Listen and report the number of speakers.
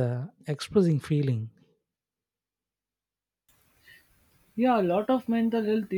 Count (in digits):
2